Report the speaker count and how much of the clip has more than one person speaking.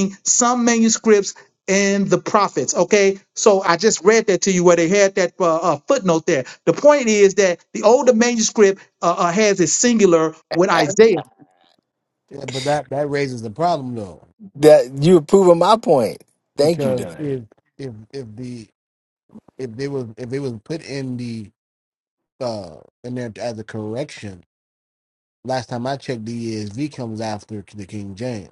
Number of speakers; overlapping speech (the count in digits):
3, about 2%